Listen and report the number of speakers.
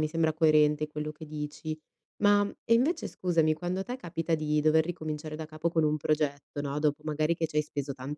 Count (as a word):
one